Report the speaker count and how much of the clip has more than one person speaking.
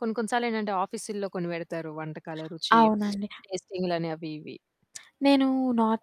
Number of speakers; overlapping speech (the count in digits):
2, about 2%